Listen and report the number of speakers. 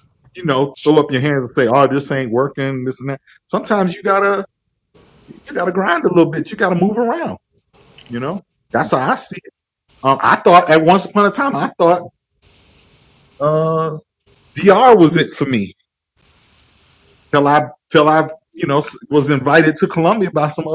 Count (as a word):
one